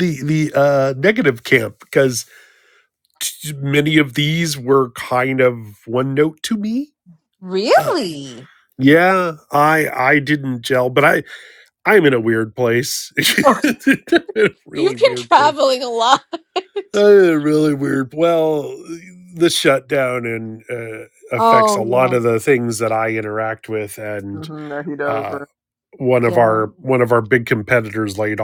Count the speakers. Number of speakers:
three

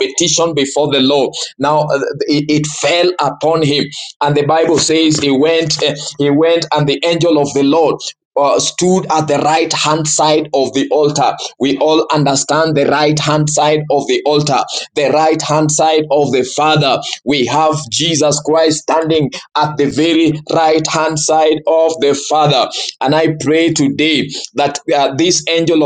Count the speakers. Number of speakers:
one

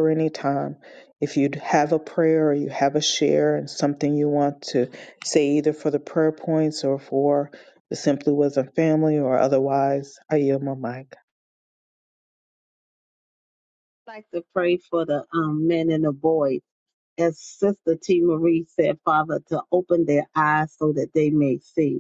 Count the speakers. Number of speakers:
two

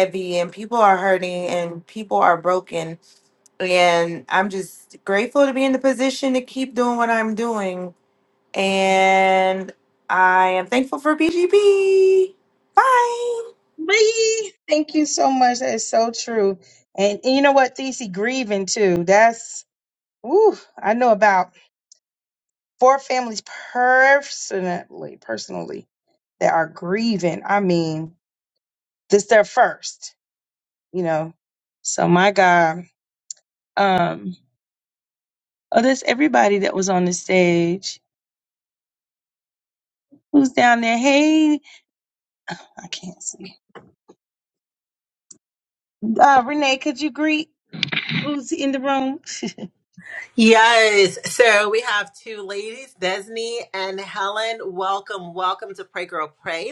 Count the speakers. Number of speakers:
three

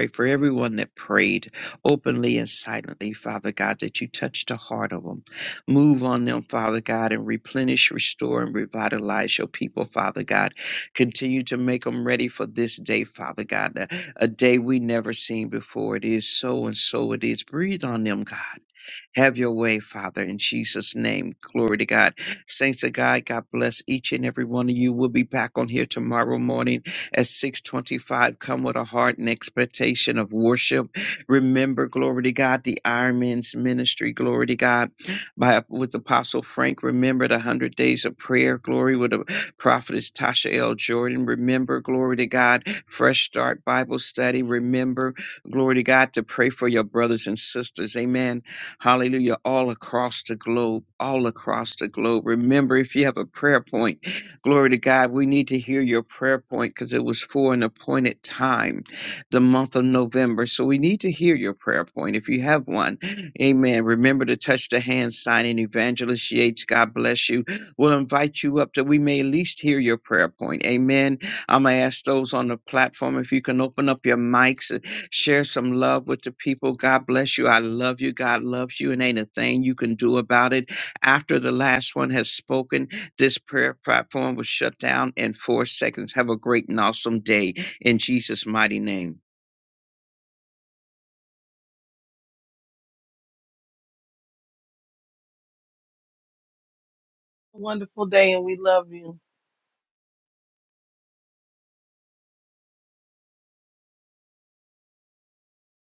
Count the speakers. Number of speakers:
two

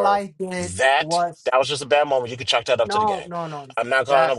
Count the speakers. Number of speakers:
two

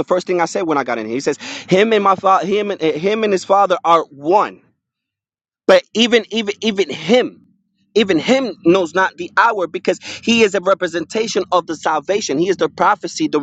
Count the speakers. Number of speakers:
one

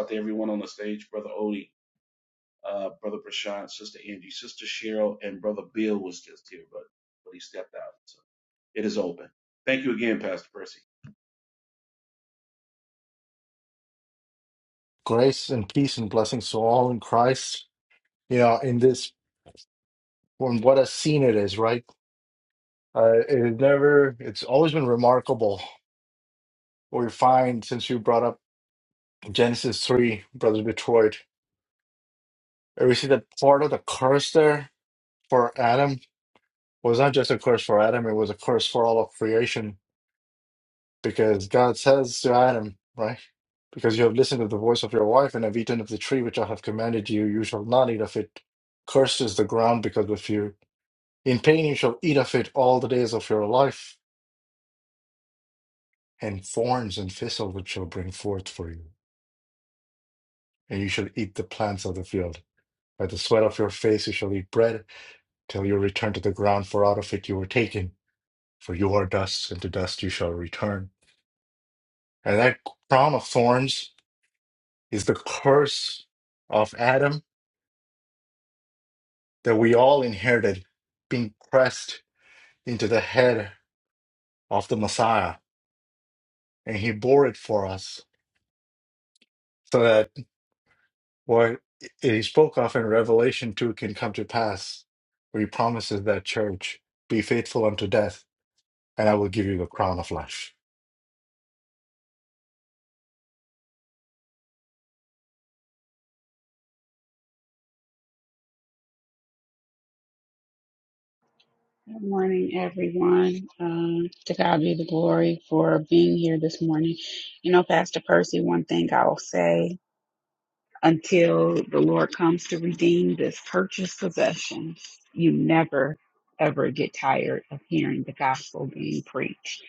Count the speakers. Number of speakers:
three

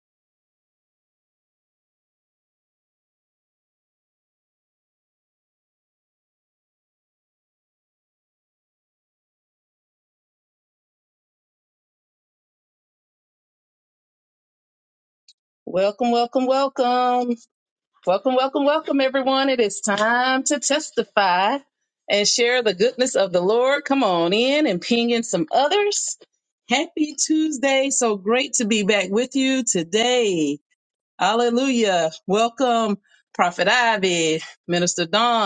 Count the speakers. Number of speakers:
one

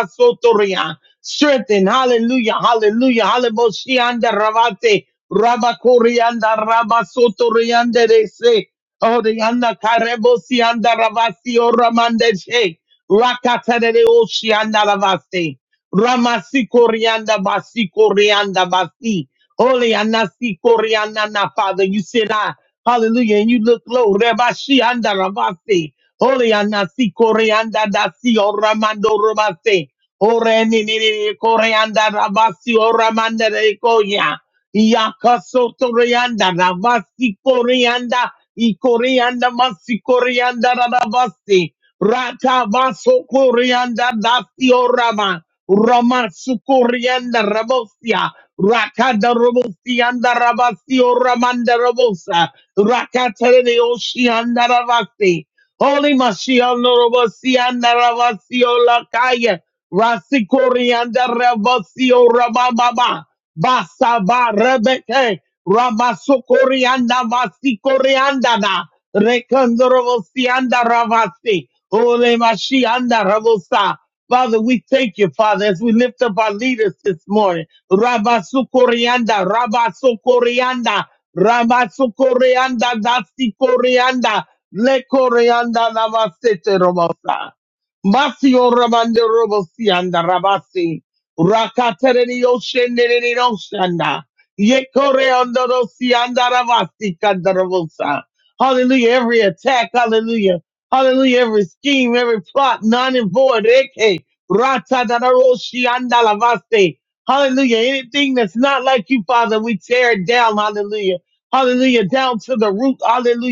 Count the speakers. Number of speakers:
one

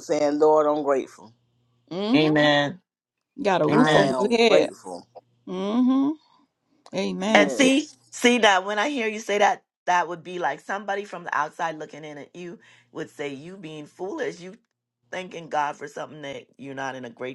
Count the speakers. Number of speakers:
three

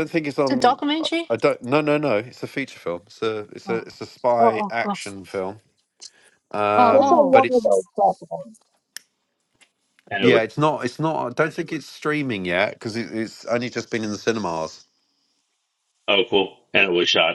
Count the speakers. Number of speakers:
four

